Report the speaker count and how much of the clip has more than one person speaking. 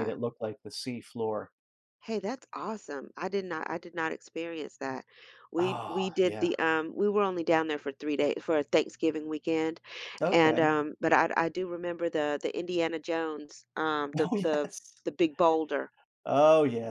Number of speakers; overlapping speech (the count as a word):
two, about 12%